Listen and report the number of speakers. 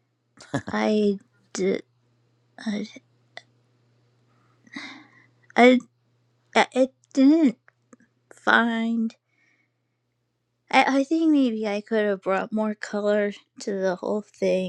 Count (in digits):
1